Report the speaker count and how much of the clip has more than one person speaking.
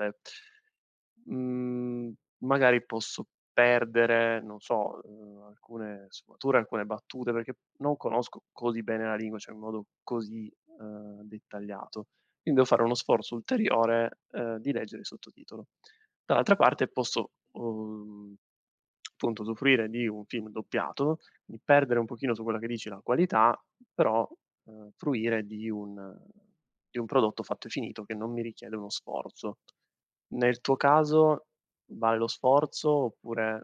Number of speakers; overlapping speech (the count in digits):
1, no overlap